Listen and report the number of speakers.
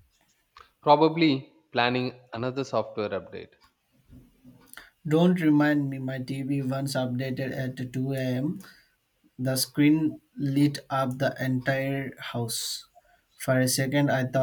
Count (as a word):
two